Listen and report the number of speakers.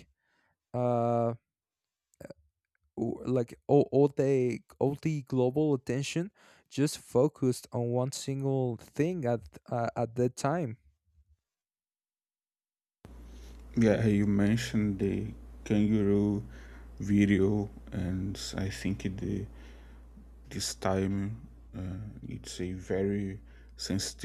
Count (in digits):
2